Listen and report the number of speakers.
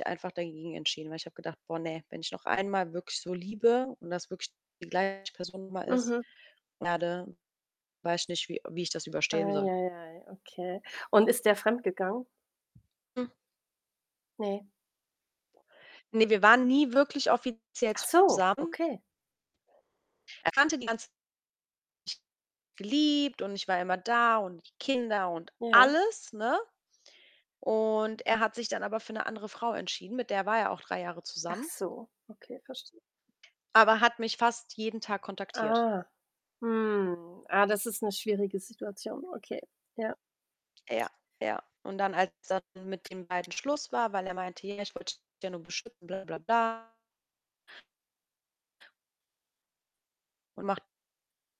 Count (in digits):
2